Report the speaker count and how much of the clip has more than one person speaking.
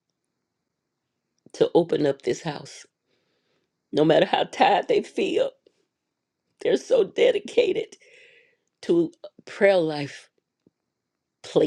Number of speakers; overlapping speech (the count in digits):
1, no overlap